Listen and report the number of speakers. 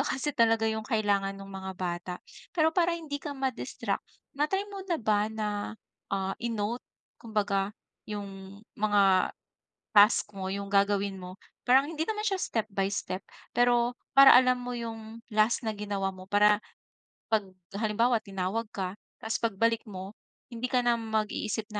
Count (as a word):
one